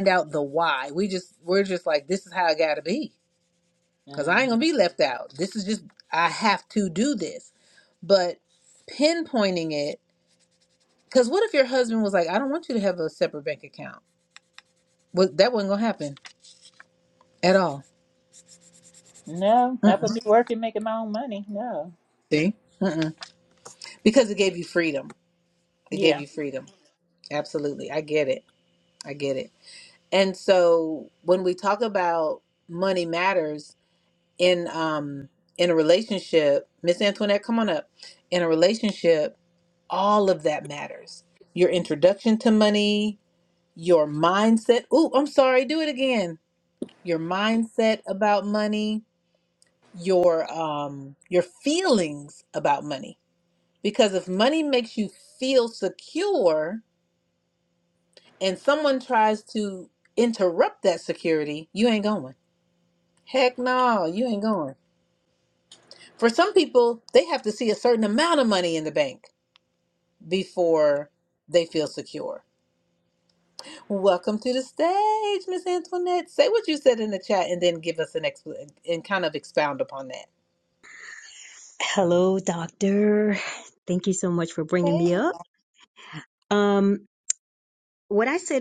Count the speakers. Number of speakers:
3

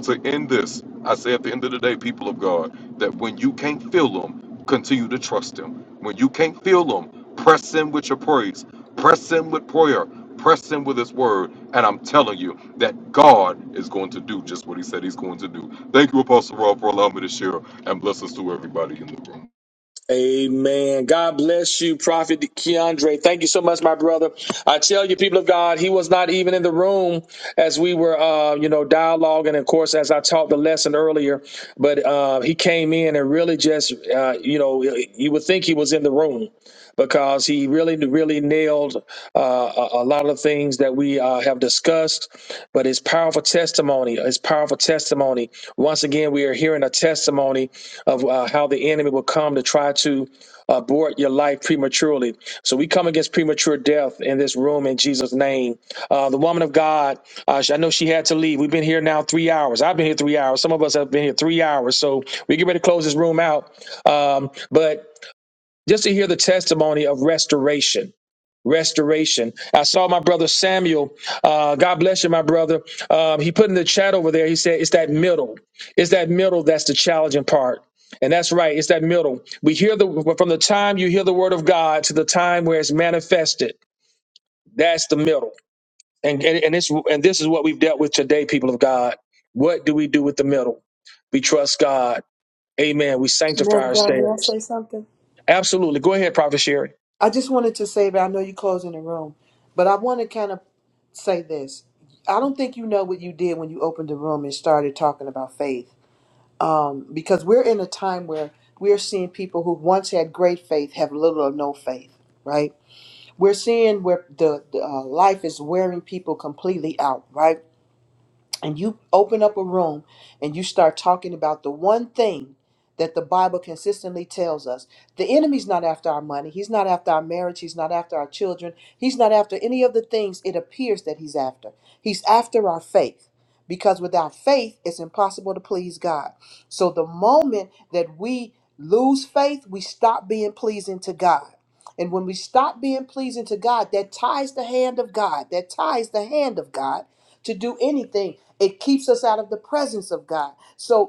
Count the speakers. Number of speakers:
3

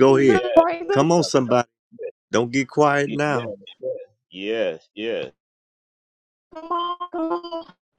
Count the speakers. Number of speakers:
3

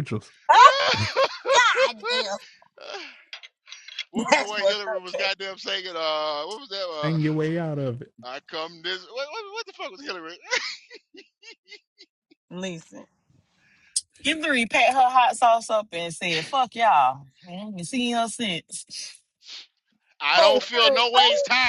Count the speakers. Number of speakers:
4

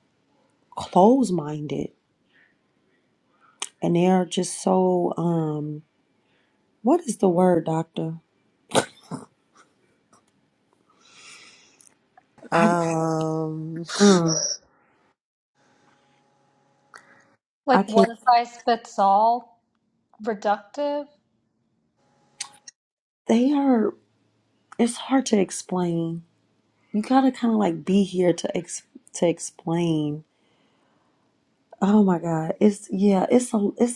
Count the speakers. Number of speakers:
3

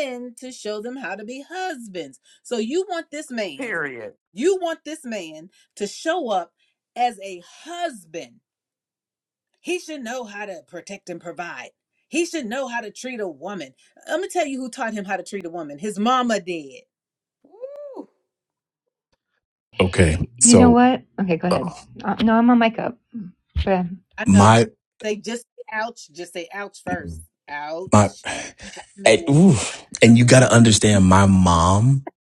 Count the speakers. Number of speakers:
4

